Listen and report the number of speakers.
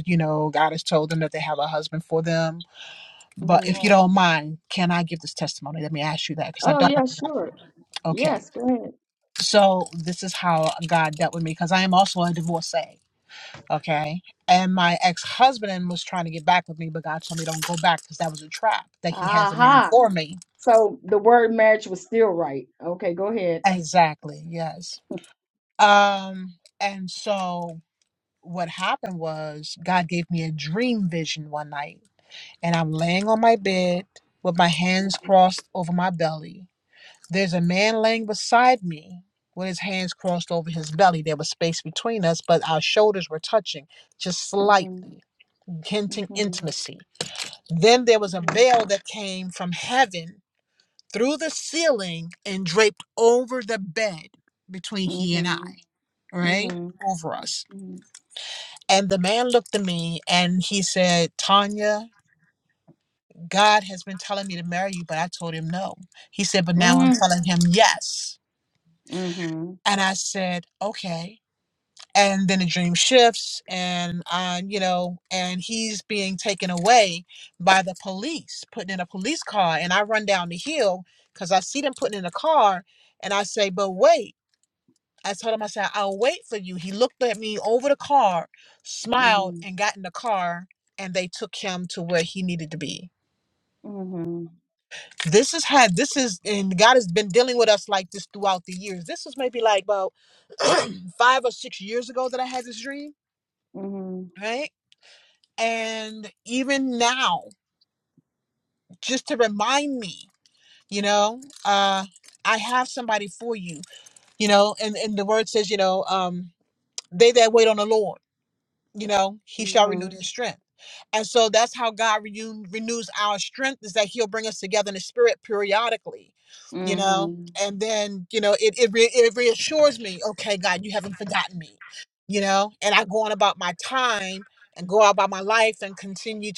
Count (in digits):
2